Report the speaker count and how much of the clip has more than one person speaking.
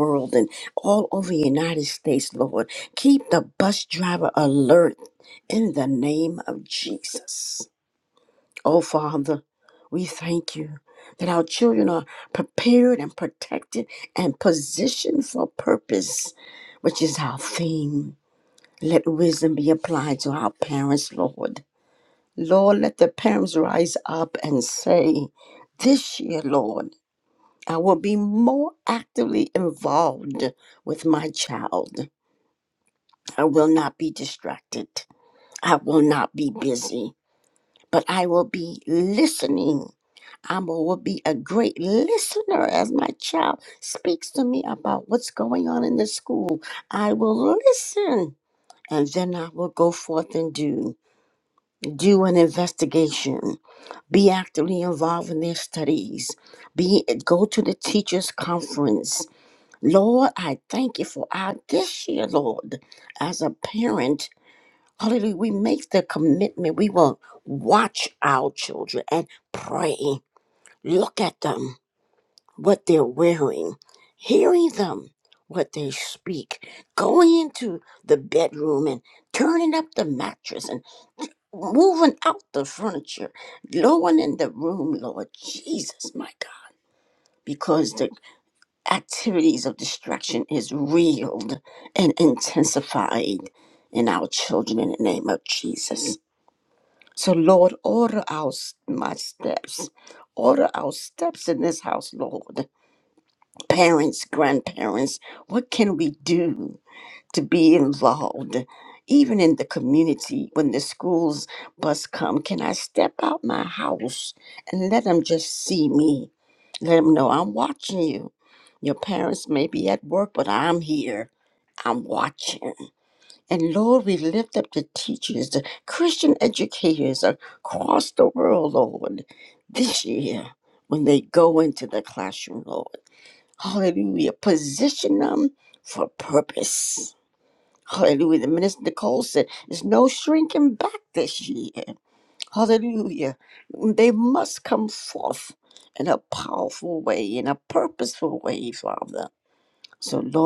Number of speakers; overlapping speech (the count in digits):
1, no overlap